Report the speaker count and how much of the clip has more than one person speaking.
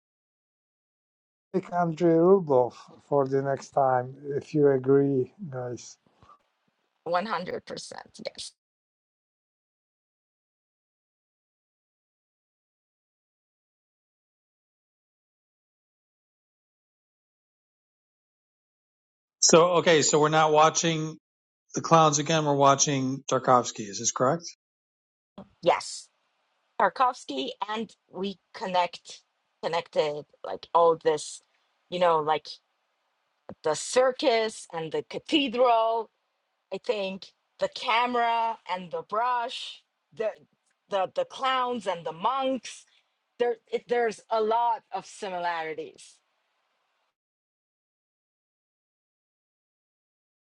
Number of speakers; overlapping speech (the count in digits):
3, no overlap